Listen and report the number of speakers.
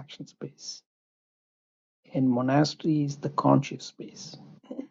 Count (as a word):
one